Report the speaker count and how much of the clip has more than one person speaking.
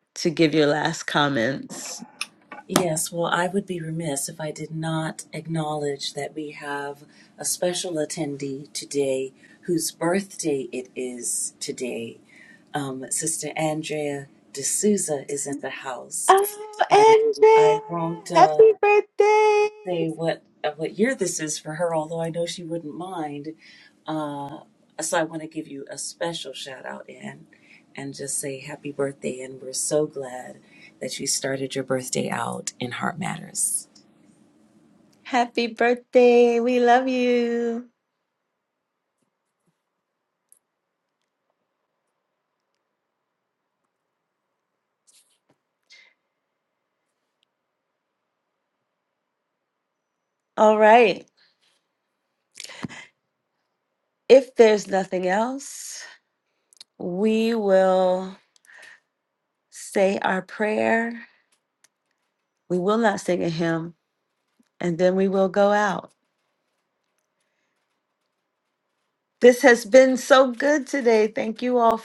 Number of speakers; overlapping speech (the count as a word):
two, about 1%